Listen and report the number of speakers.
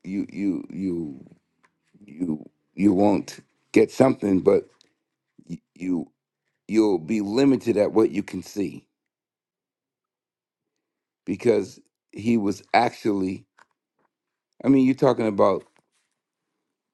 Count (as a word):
one